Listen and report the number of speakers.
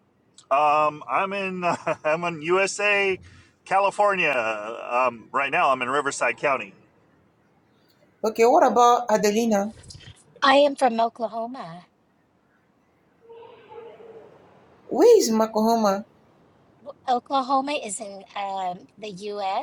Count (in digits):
3